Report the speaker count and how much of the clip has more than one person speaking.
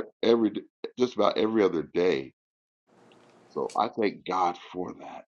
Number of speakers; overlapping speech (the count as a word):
one, no overlap